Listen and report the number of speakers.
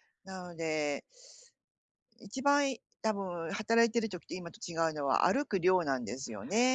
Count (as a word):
one